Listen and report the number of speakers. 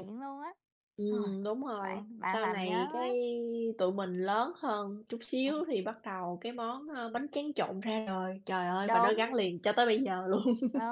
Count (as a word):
two